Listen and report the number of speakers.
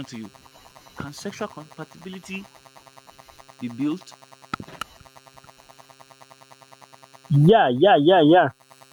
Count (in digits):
2